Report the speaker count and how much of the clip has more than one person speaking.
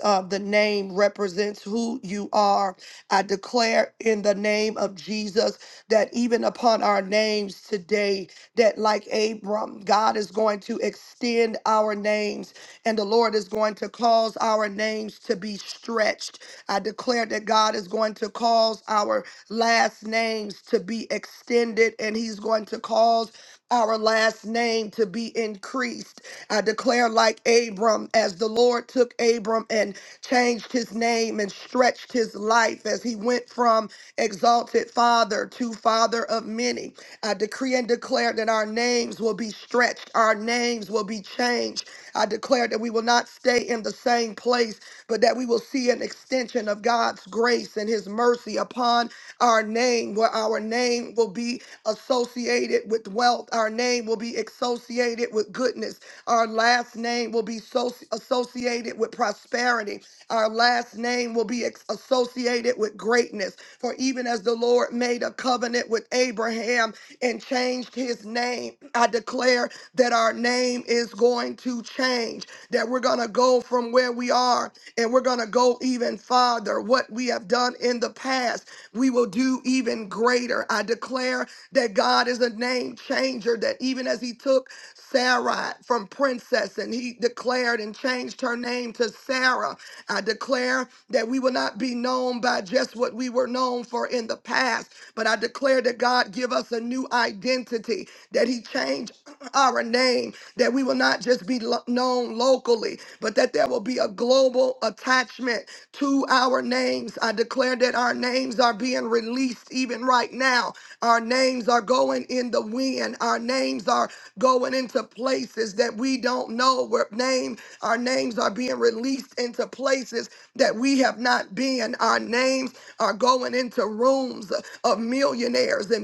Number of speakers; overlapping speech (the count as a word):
one, no overlap